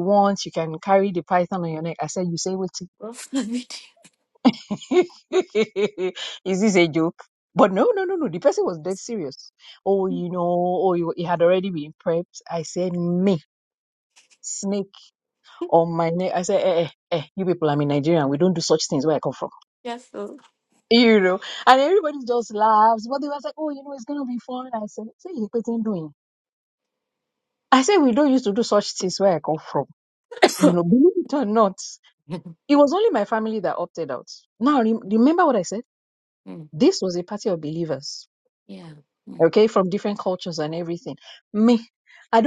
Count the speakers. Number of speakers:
2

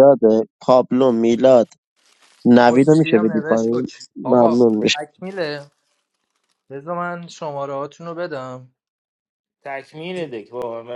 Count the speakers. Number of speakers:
3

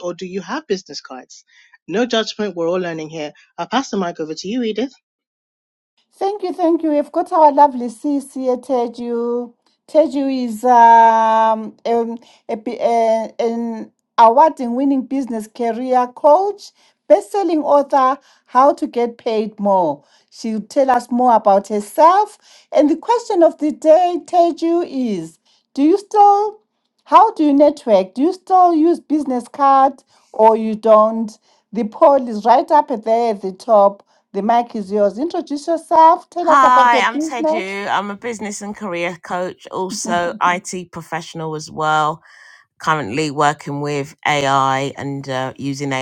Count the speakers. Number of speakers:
3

